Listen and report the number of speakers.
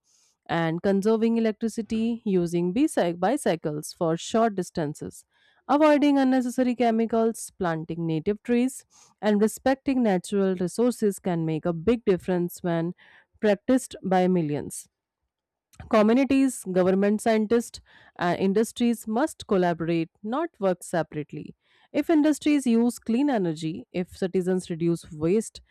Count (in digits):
1